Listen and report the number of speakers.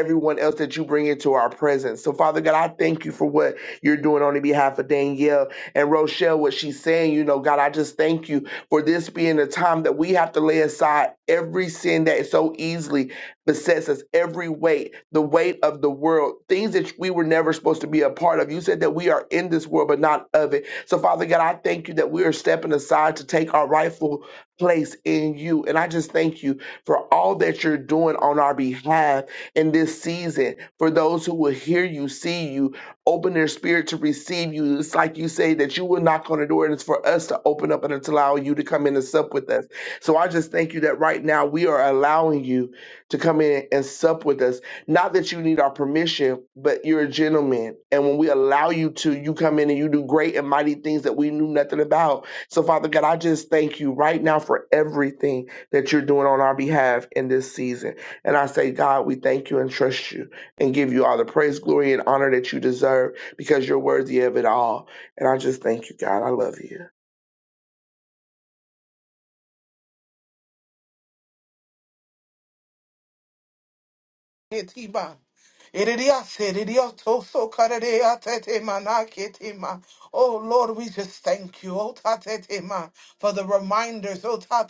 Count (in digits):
2